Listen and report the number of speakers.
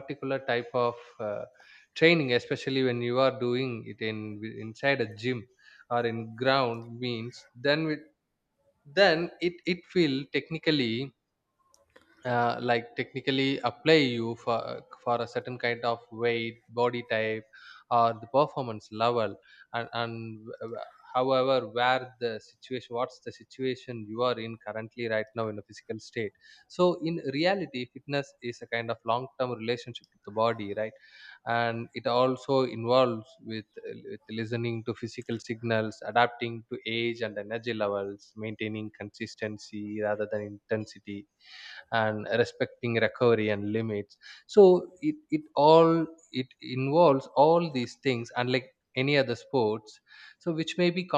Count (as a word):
one